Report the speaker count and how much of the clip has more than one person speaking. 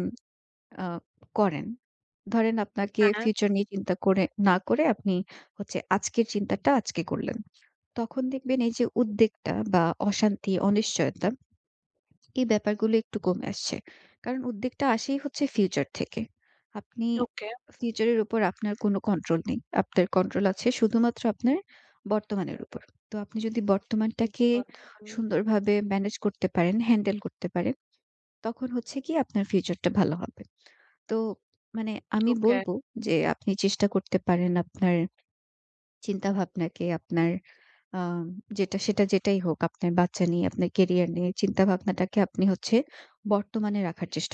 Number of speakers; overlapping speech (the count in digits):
2, about 2%